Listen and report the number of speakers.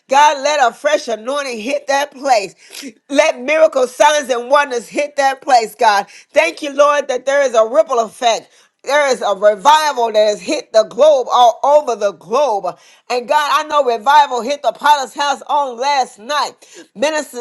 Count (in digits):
1